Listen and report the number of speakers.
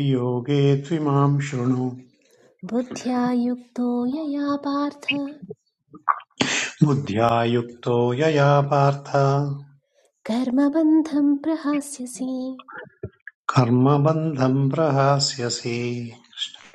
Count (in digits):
2